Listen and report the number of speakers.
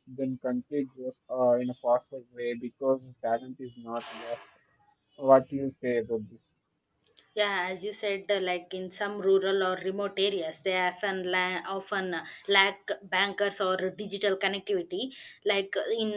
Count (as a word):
two